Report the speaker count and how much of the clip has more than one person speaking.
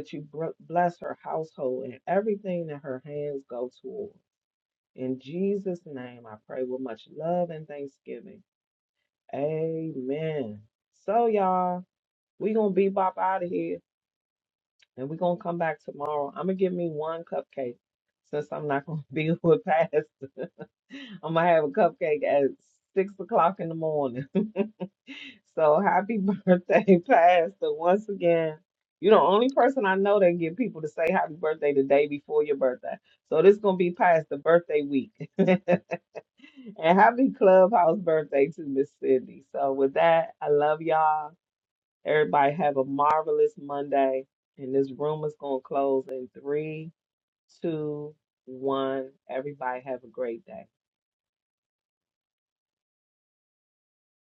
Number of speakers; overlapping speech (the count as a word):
one, no overlap